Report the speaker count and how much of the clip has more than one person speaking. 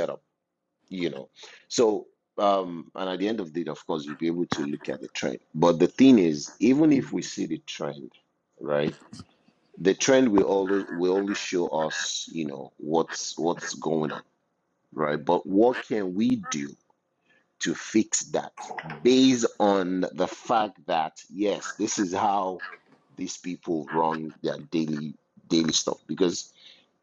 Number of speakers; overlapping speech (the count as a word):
one, no overlap